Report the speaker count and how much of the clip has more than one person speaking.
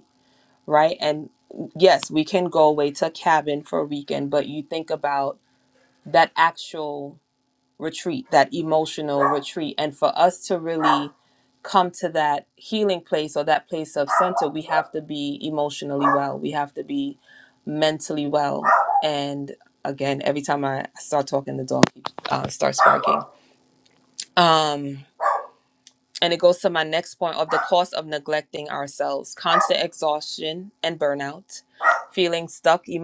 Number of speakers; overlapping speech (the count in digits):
1, no overlap